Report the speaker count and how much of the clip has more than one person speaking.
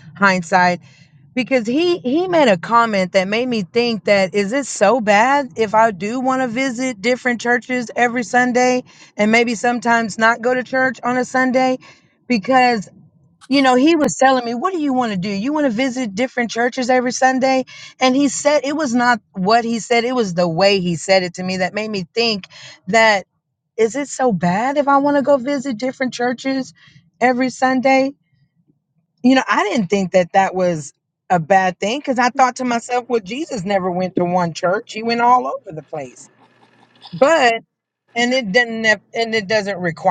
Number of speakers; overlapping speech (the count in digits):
1, no overlap